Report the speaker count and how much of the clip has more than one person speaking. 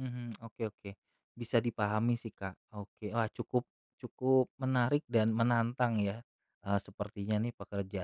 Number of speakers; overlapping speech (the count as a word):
one, no overlap